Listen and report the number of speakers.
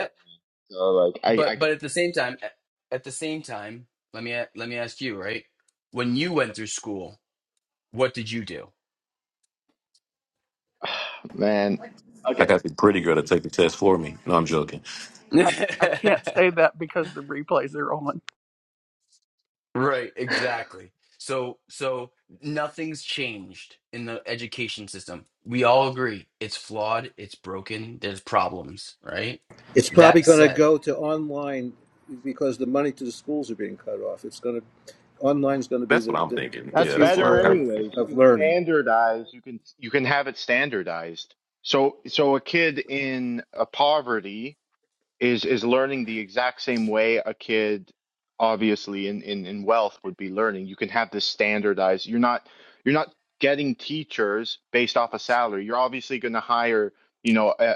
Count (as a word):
five